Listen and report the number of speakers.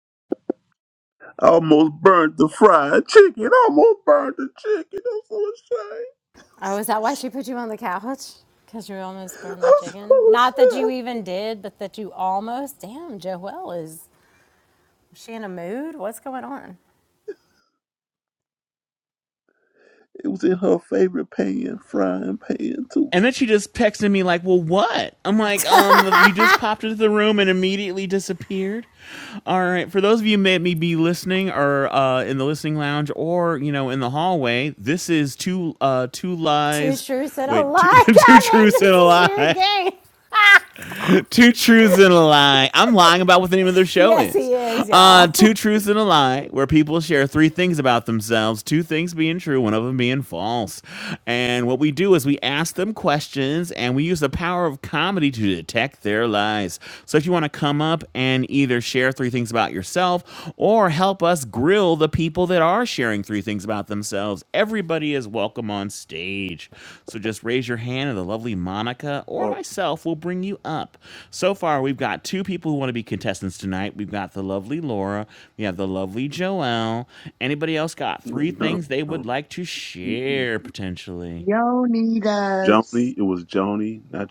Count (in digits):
4